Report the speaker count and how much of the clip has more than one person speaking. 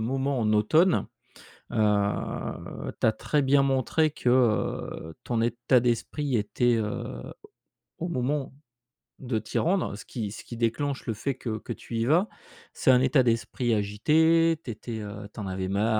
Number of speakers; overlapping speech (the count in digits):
1, no overlap